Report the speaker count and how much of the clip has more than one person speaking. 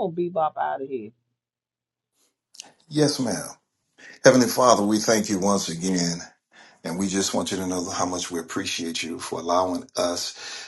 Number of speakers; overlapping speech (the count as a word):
two, no overlap